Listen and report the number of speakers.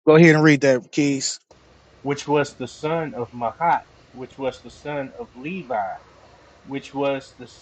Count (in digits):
2